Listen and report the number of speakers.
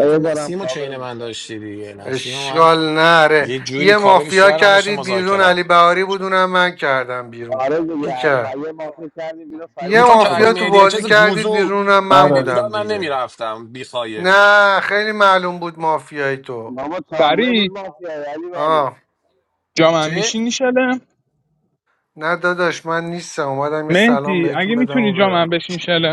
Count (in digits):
4